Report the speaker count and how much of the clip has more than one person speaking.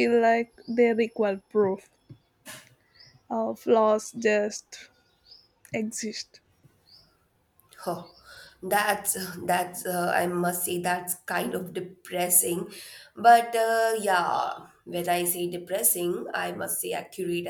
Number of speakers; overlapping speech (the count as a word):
two, no overlap